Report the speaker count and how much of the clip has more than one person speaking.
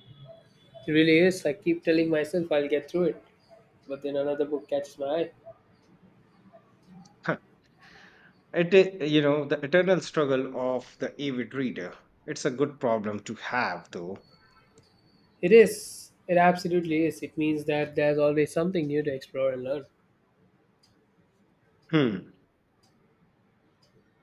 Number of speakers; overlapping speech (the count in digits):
2, no overlap